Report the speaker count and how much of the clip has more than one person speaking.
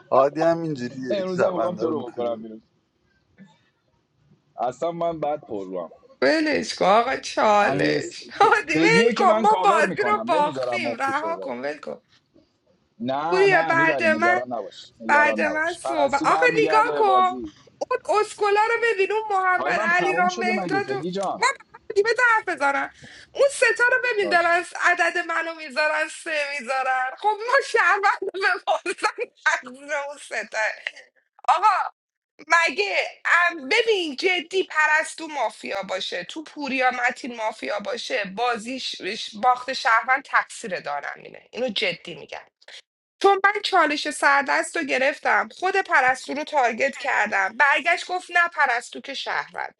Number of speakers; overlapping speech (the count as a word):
three, about 20%